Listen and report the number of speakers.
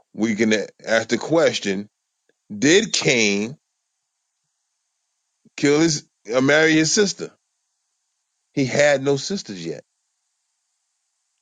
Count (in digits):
1